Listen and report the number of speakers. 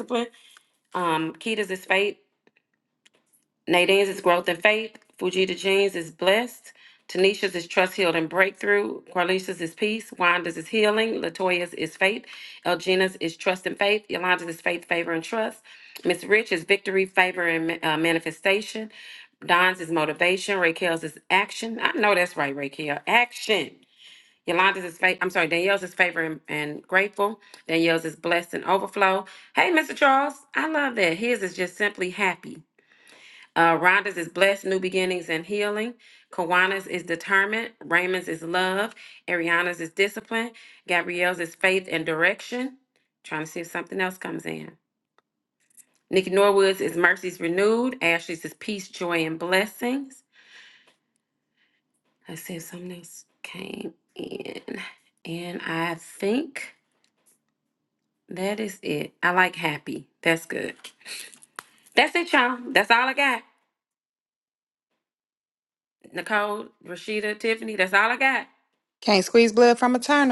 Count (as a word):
two